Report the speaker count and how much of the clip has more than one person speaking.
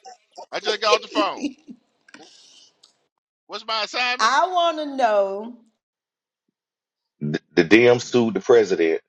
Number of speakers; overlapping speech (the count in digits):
3, about 1%